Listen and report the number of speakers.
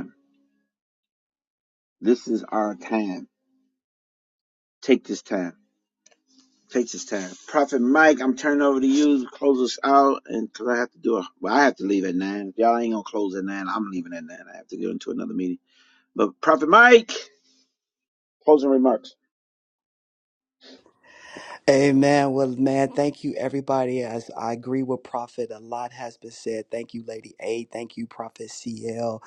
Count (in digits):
2